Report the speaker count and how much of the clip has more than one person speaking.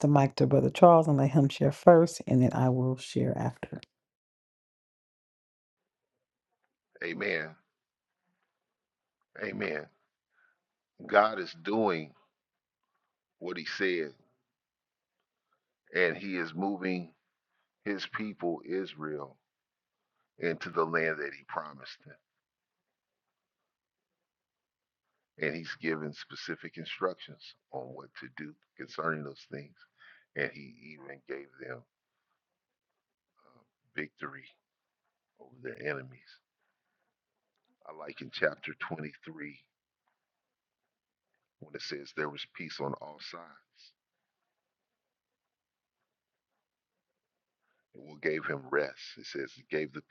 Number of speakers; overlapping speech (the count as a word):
two, no overlap